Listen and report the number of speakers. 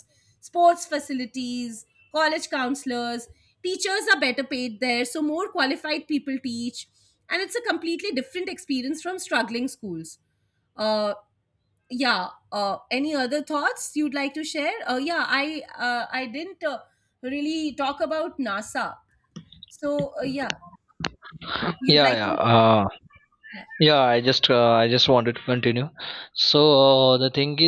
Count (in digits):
2